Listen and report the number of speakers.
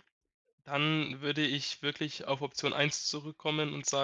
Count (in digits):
1